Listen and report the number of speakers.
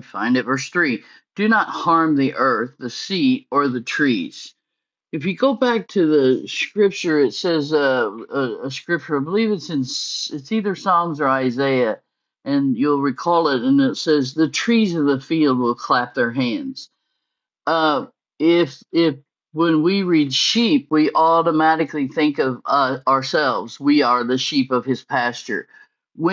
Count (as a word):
one